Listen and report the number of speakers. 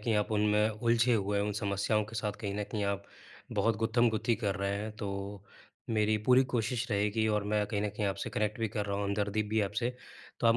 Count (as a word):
one